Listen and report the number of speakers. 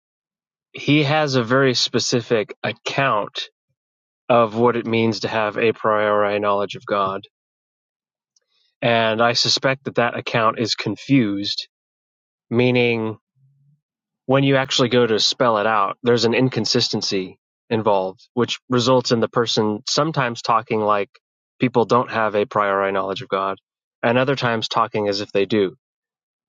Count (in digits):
1